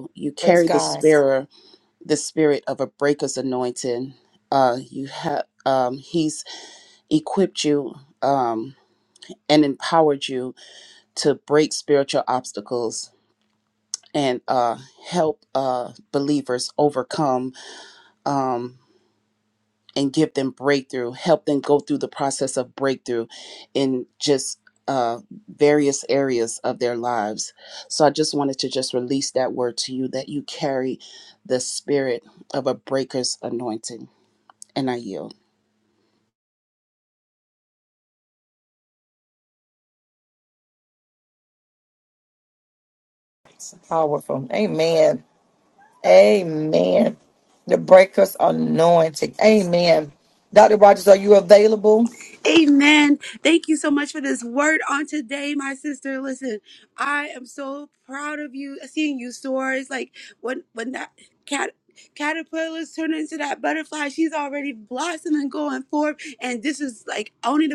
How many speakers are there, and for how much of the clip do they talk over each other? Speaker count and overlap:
3, about 1%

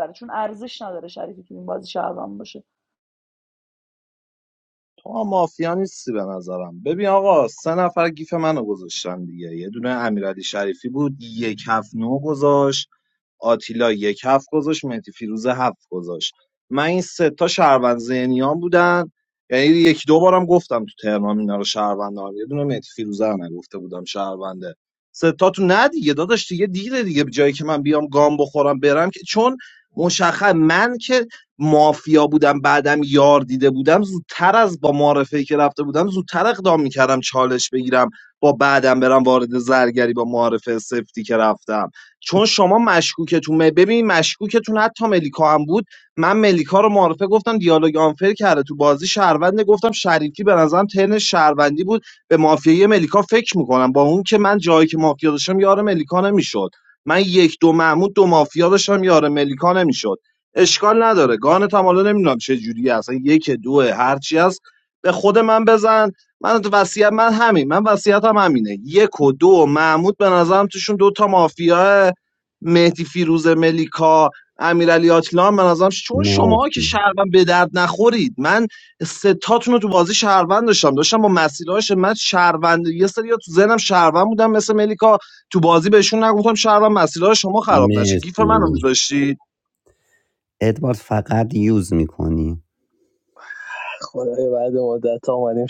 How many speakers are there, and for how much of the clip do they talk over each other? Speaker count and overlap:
4, about 2%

